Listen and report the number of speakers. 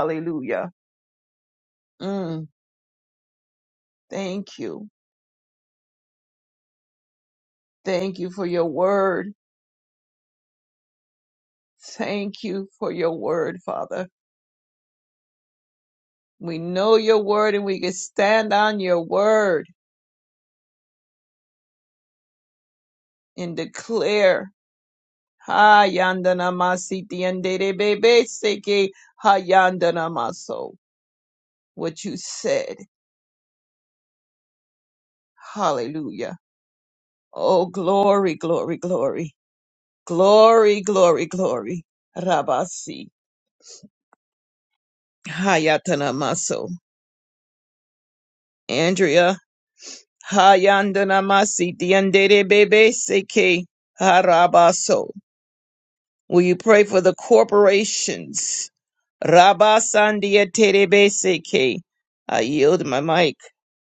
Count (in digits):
1